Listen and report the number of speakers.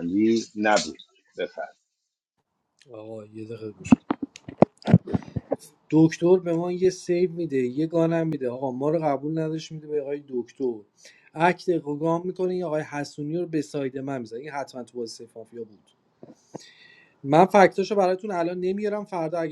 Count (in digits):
2